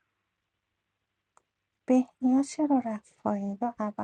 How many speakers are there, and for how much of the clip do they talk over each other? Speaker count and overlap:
one, no overlap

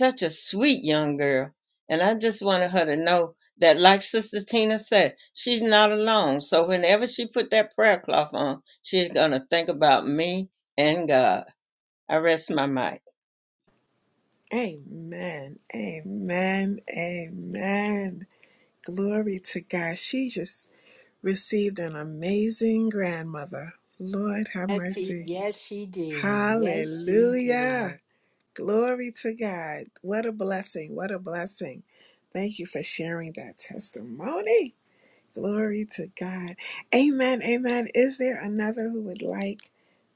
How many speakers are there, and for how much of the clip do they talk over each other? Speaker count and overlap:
three, about 4%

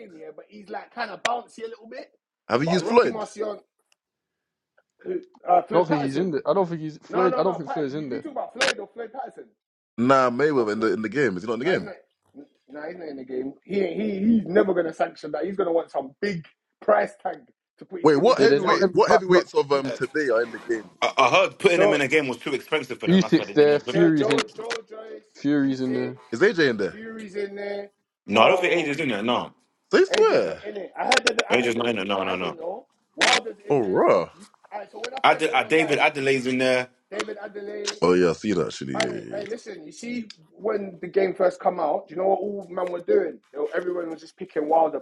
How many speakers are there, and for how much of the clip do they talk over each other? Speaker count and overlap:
four, about 23%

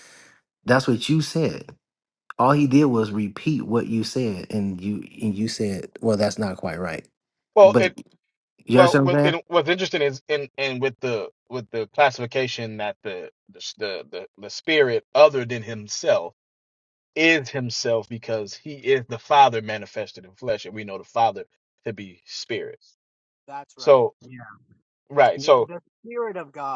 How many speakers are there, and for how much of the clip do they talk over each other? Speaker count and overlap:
three, about 5%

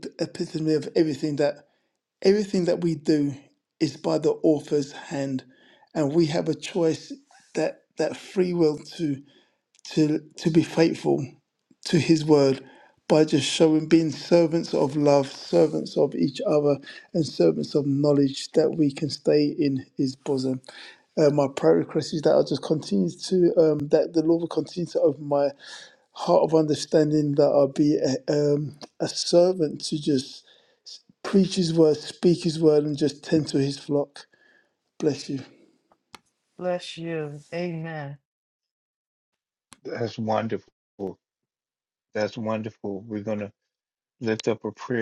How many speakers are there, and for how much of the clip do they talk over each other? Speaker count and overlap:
three, no overlap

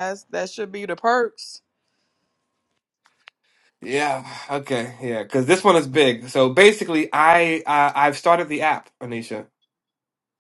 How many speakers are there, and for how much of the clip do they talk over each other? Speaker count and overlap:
two, no overlap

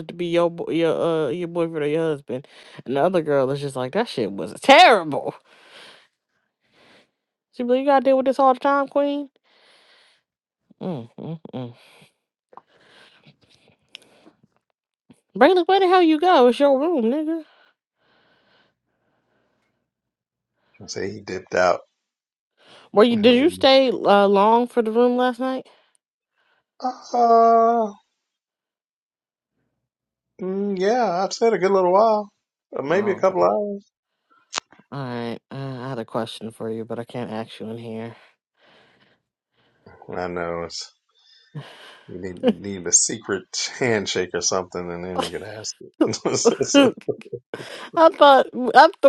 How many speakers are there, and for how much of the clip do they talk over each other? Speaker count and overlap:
two, about 2%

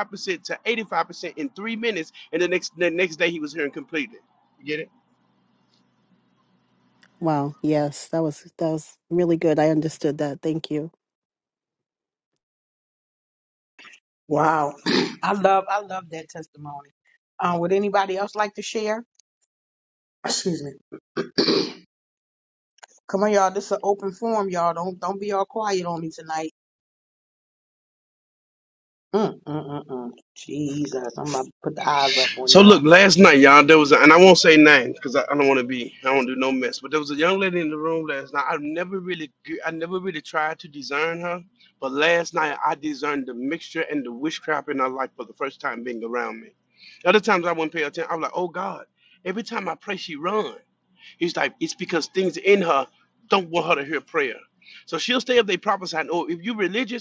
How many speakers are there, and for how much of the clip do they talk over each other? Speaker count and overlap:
three, about 1%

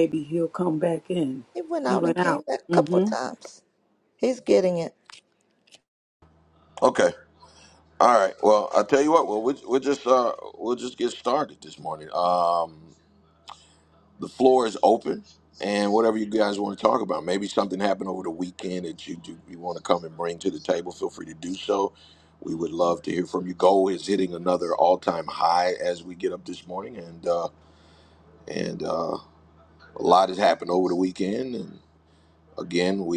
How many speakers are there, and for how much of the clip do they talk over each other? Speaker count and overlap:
three, about 4%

